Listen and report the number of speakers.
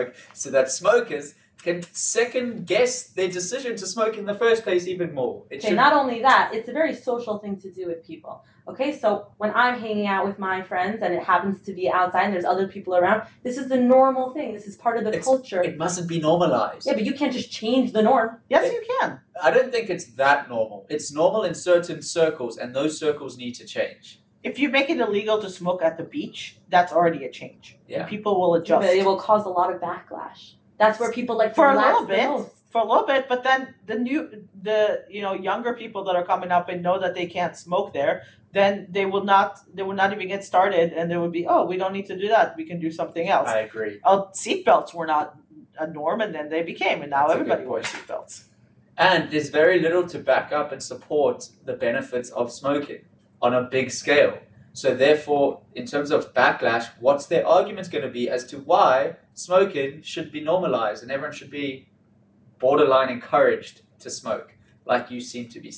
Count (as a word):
three